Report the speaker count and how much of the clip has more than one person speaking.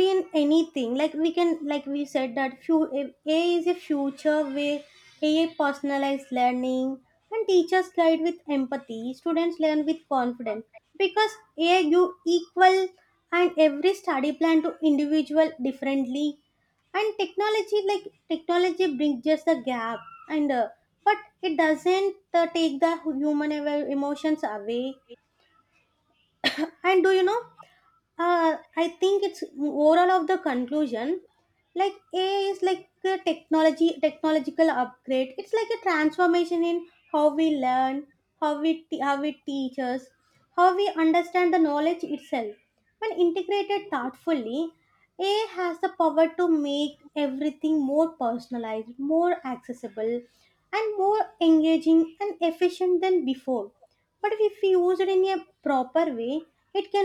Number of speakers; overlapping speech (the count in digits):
1, no overlap